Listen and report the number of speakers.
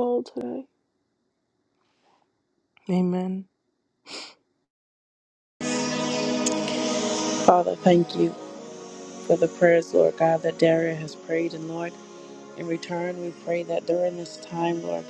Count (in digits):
2